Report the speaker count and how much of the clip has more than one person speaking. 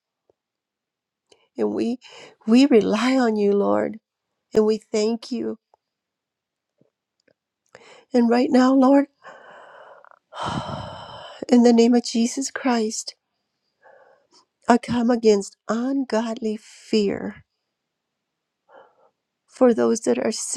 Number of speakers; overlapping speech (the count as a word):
one, no overlap